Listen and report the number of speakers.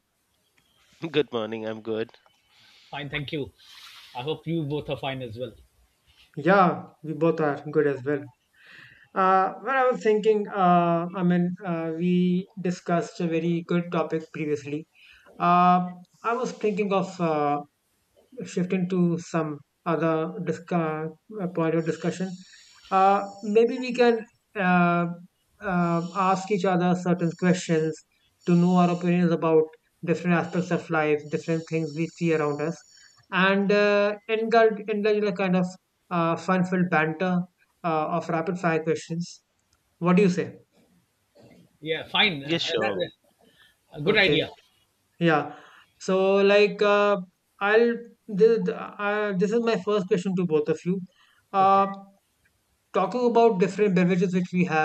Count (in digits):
3